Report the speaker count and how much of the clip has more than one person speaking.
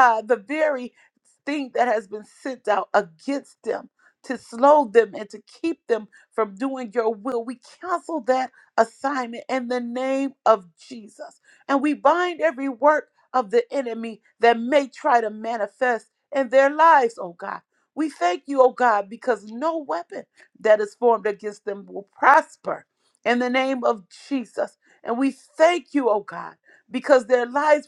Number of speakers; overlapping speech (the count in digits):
1, no overlap